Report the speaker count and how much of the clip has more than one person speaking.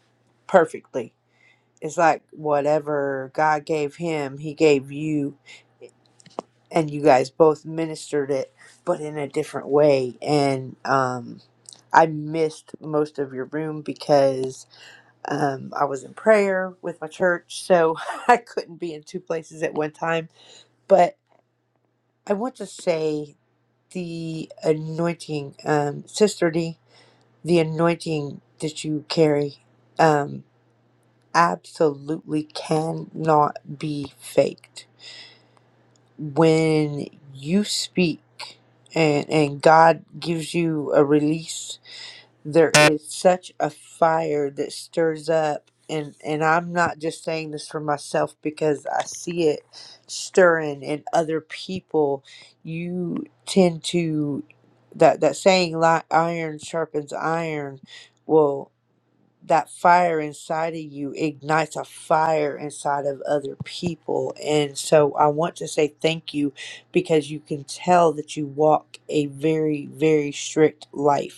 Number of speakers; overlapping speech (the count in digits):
1, no overlap